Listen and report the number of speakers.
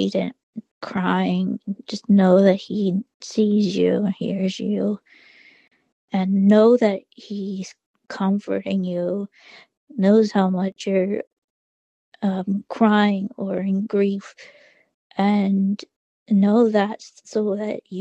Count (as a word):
one